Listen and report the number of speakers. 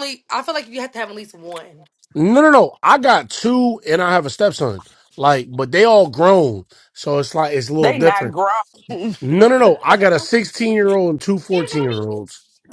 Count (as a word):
three